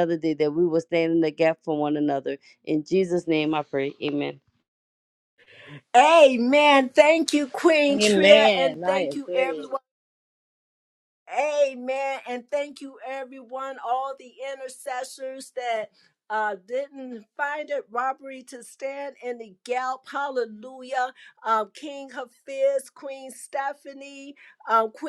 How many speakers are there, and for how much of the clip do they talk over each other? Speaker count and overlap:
2, no overlap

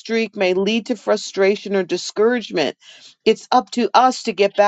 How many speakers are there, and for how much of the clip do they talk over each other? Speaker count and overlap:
1, no overlap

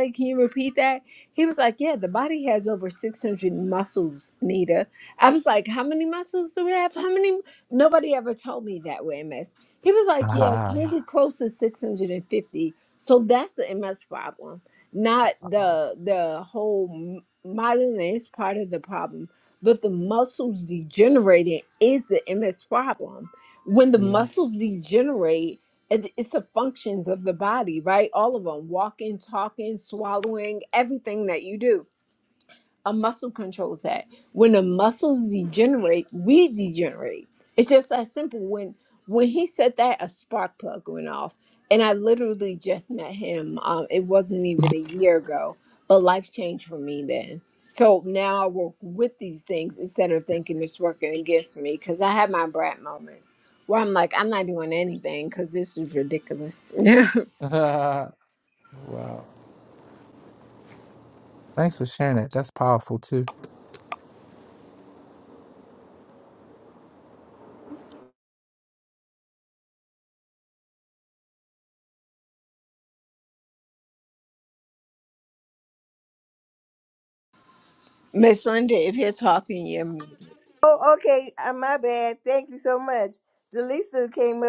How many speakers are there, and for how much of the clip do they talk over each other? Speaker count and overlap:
3, about 1%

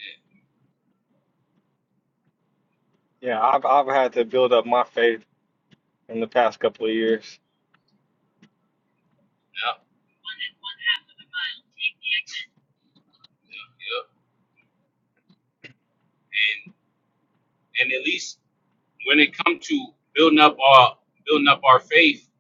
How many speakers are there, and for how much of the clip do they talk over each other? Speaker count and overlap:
2, no overlap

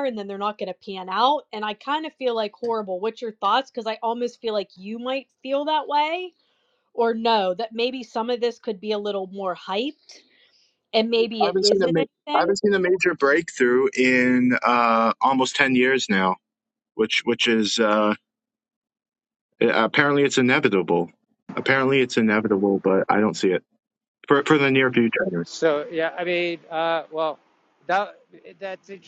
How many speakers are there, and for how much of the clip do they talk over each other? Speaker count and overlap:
3, about 4%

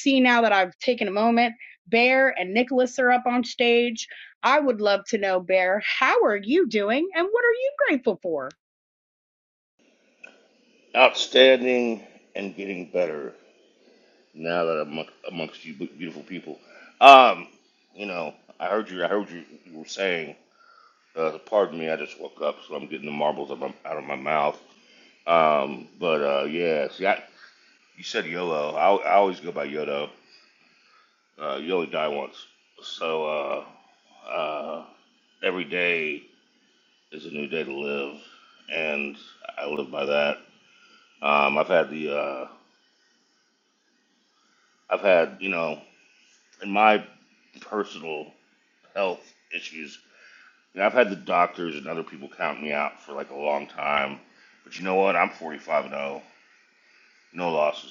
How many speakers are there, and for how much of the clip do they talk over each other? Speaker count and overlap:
2, no overlap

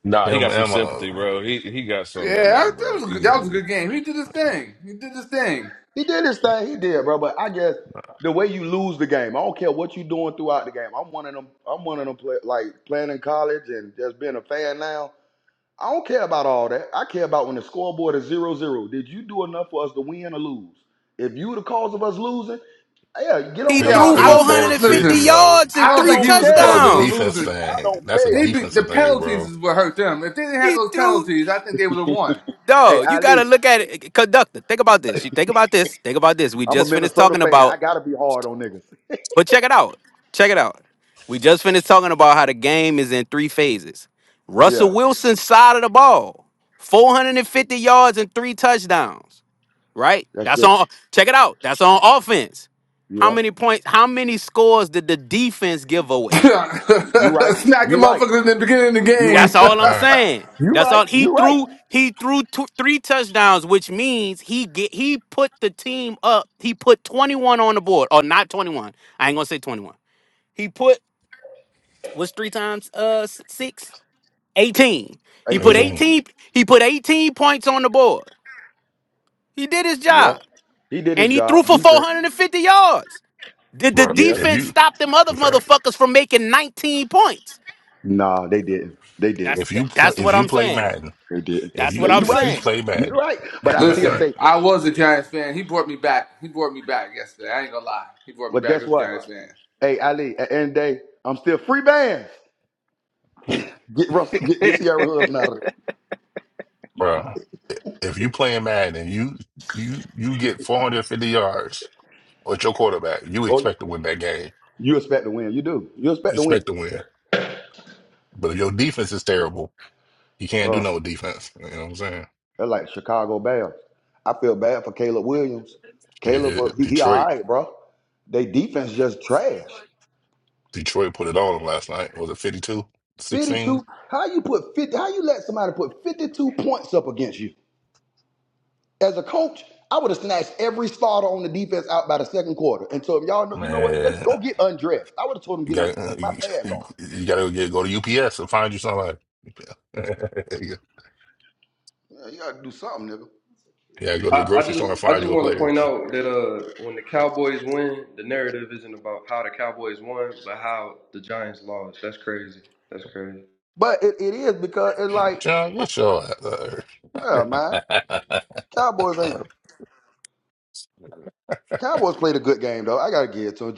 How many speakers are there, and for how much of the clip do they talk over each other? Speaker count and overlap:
6, about 15%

